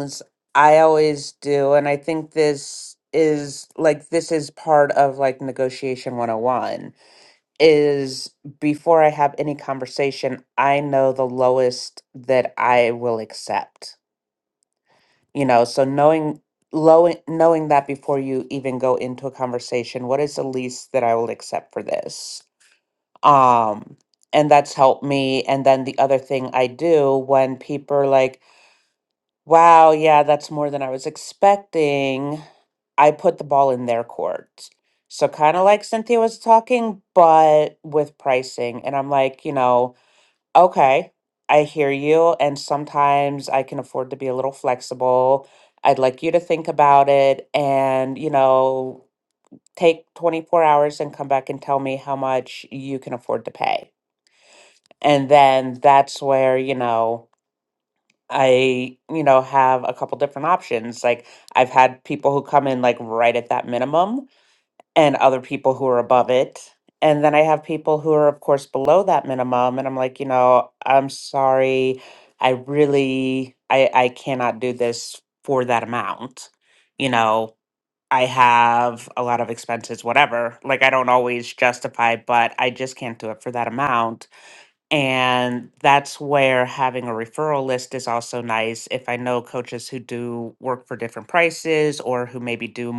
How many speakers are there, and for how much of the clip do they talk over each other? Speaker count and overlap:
one, no overlap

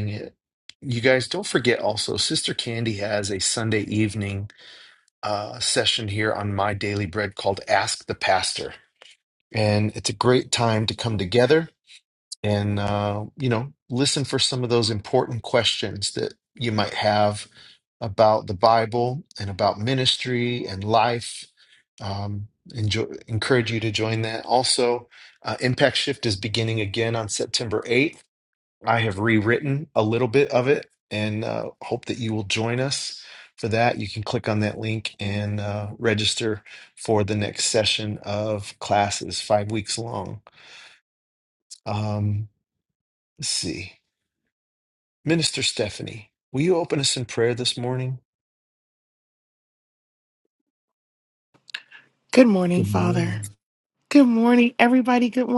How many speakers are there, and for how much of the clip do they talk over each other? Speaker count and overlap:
two, about 1%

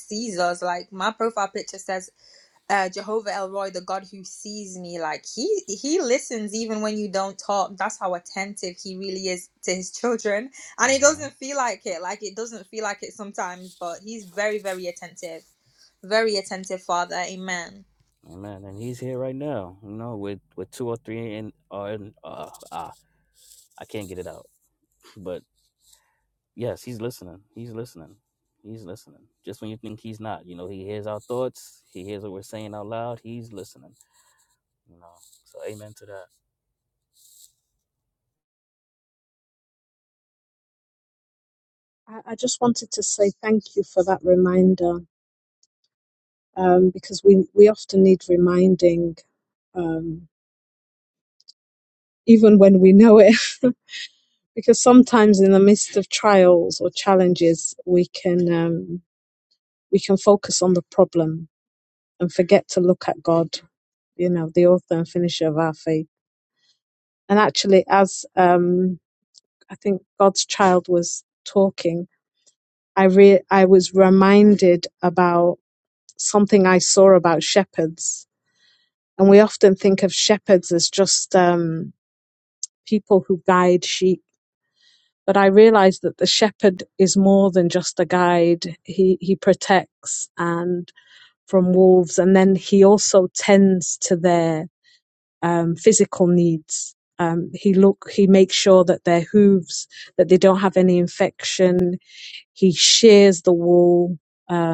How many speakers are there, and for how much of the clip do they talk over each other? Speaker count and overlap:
three, under 1%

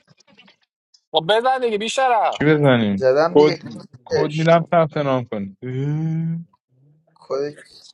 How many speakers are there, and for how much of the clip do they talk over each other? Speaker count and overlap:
three, about 10%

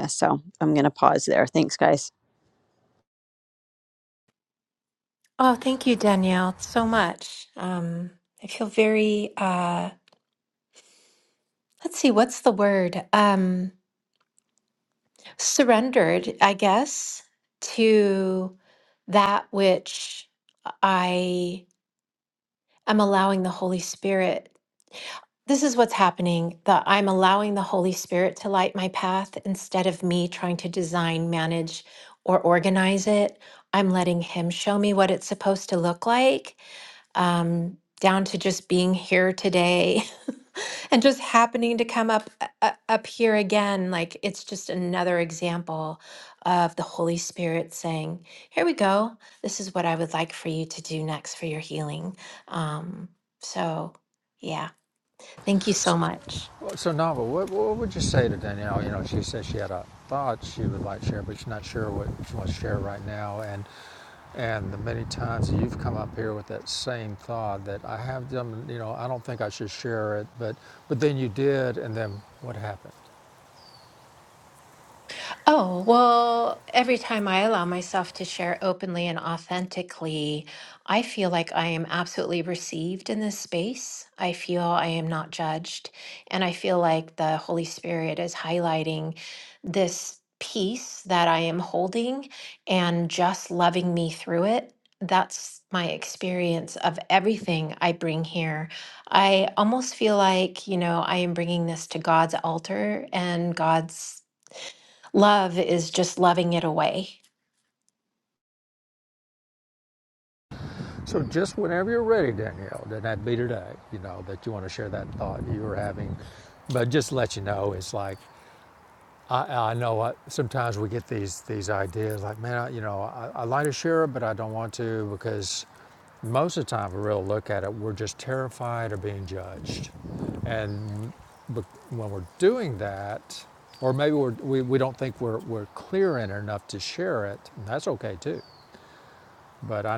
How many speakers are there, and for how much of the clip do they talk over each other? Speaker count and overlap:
three, no overlap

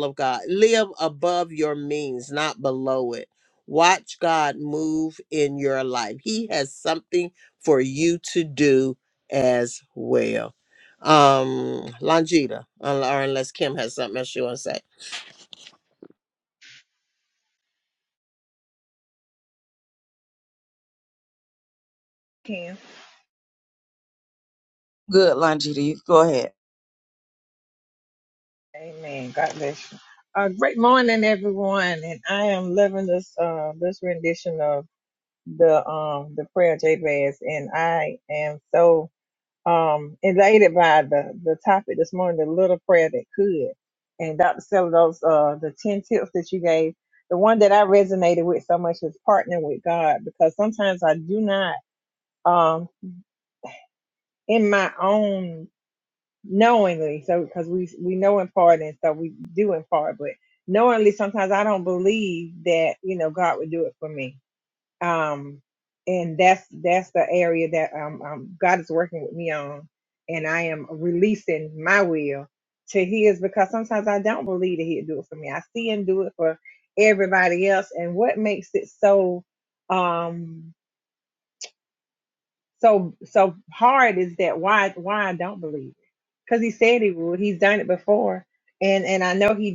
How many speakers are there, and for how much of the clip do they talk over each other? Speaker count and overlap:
three, no overlap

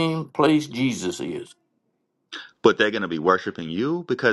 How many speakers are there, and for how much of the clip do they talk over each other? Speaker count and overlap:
two, no overlap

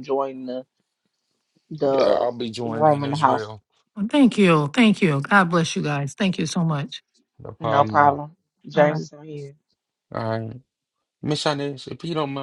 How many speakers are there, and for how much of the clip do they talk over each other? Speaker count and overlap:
three, about 15%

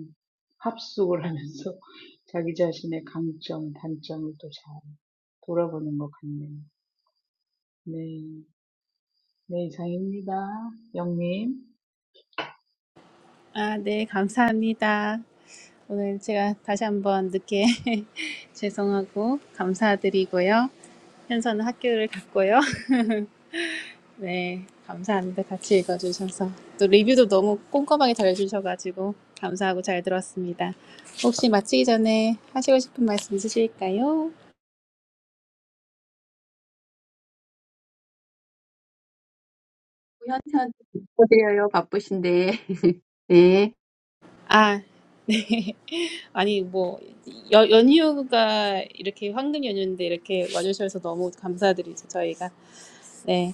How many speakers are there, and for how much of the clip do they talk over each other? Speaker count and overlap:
three, no overlap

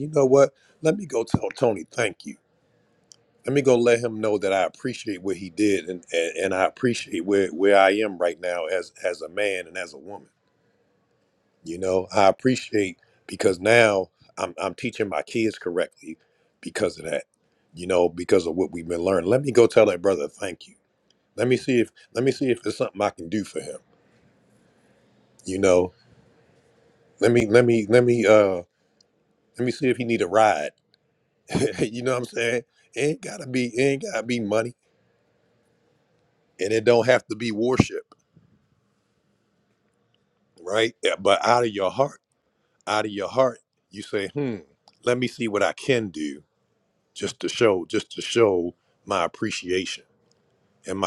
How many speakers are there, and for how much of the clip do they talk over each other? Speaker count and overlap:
one, no overlap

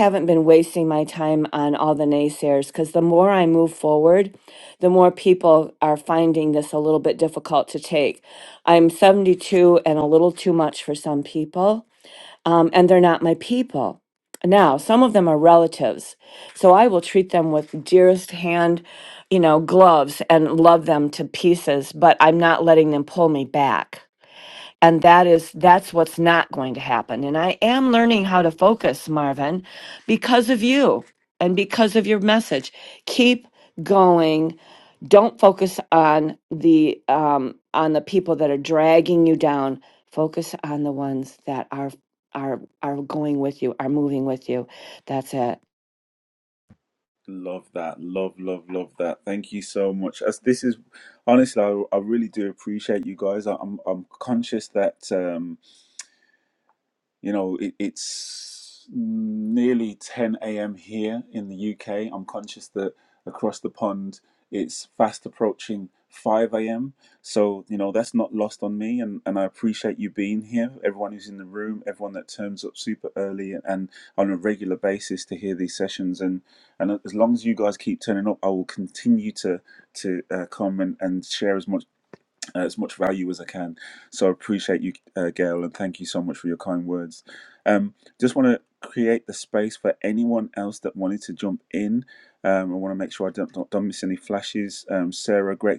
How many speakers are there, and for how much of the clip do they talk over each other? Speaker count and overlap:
two, no overlap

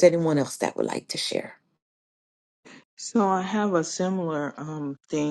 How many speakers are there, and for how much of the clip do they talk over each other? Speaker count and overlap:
two, no overlap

